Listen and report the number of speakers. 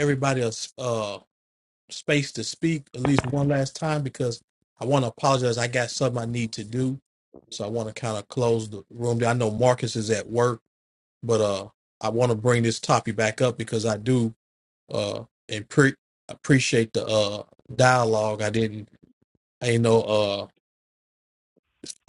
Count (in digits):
1